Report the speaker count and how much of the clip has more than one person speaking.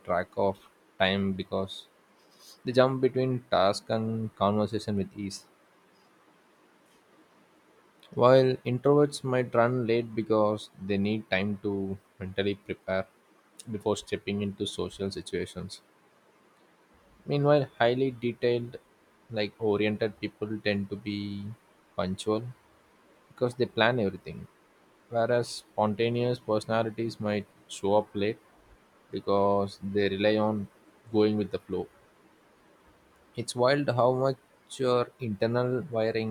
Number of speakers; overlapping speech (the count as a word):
one, no overlap